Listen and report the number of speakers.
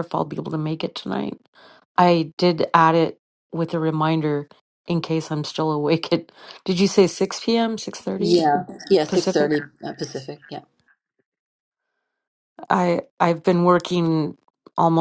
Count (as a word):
two